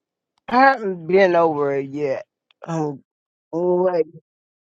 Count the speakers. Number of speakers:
1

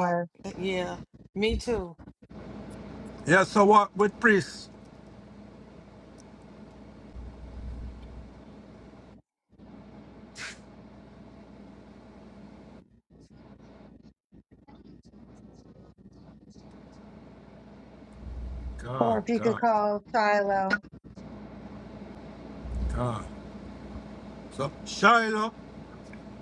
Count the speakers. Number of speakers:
3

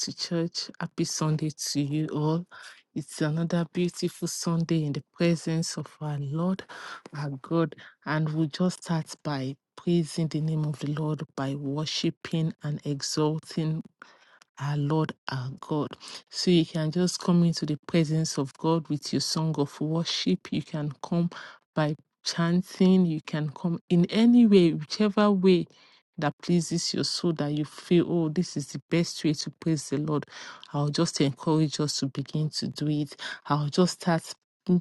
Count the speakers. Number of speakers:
1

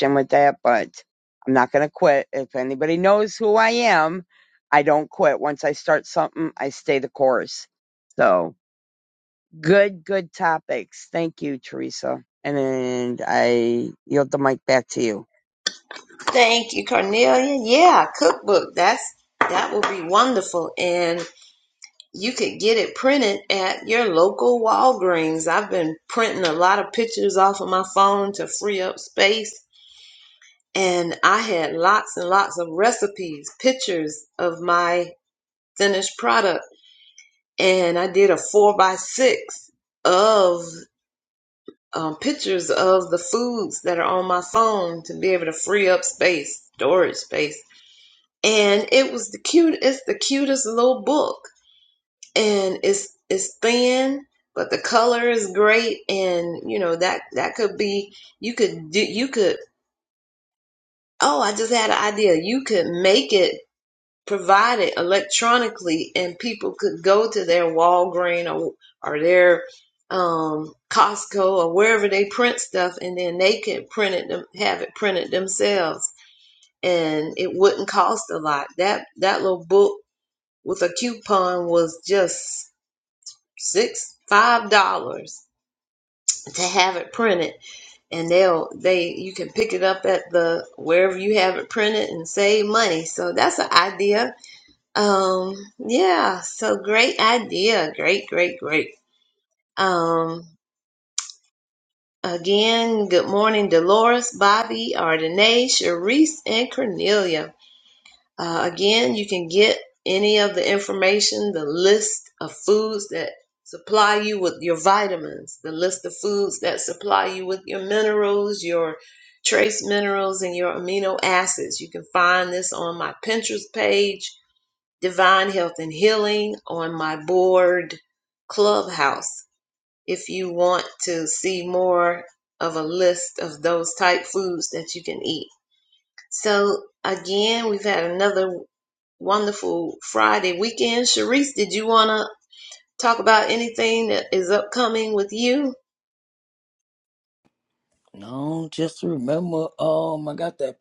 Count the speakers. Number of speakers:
3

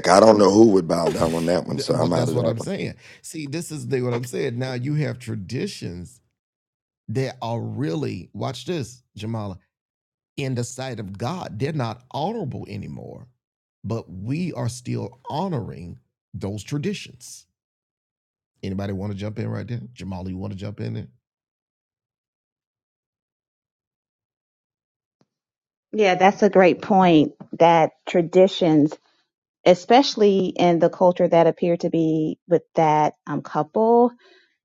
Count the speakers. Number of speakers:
3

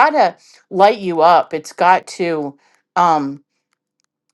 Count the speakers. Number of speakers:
1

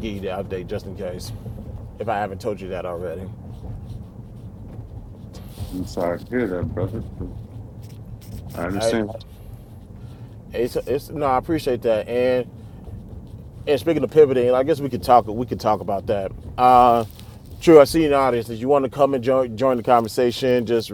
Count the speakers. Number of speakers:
2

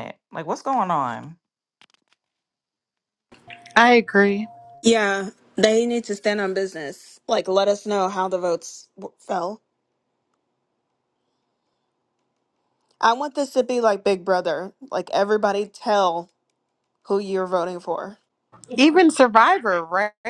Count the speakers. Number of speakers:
3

